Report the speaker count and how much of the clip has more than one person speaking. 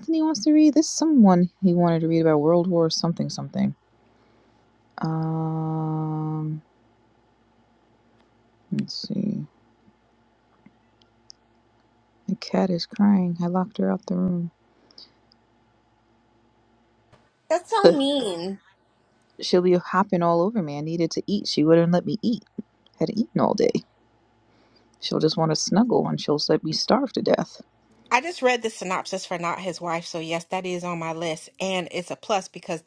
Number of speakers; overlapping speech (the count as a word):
three, about 1%